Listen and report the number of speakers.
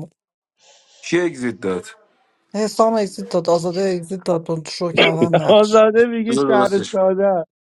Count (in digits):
3